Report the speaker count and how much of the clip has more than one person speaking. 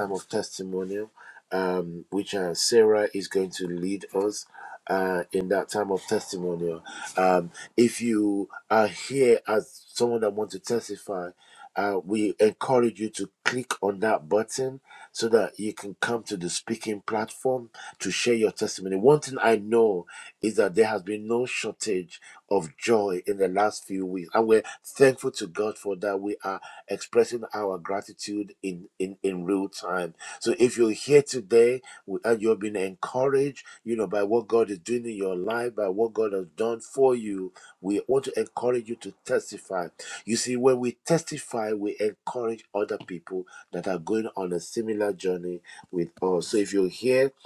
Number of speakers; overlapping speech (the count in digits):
1, no overlap